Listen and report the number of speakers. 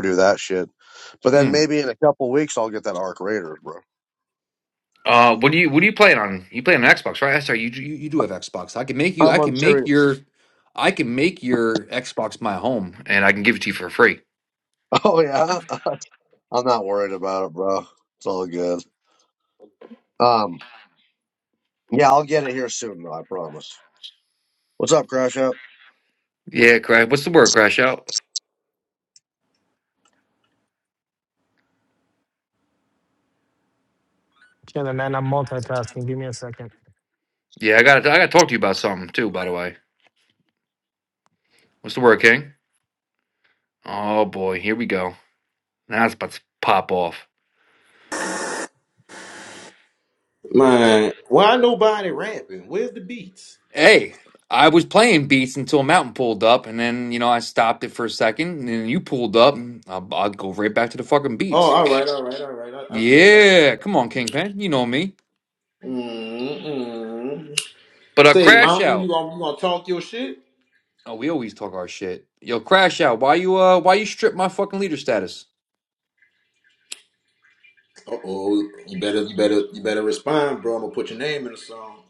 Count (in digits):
4